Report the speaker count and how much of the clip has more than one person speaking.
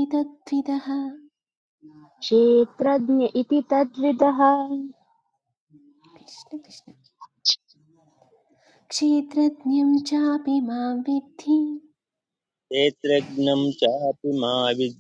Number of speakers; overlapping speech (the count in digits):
3, no overlap